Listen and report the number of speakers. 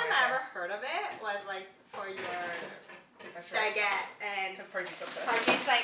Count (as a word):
two